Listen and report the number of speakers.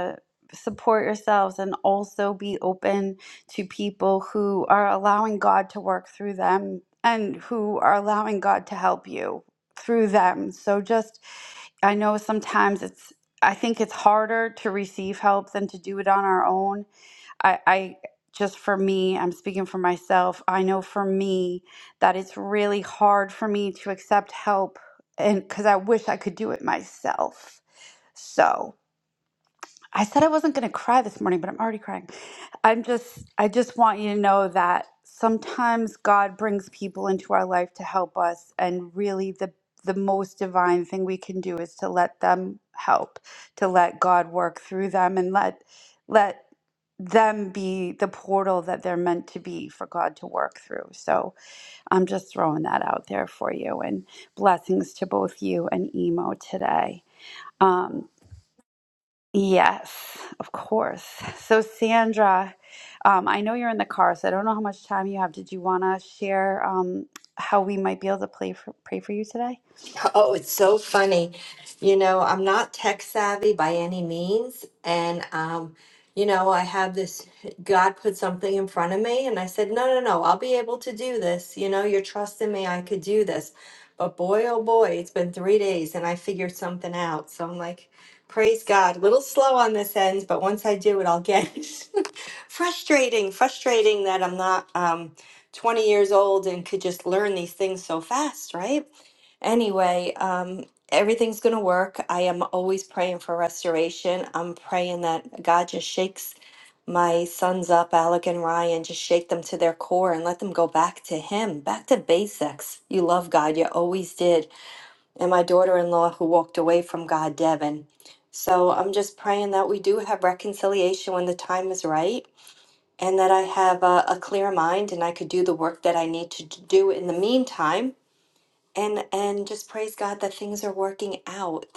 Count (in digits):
2